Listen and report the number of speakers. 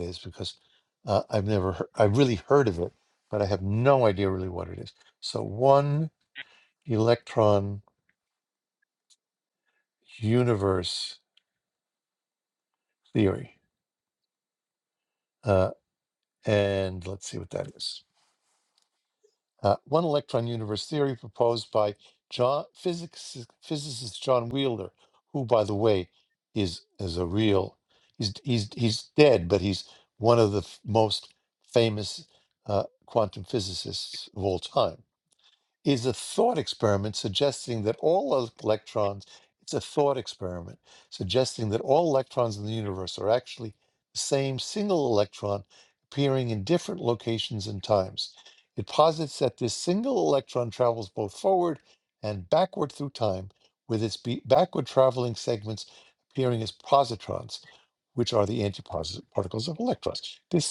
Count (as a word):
one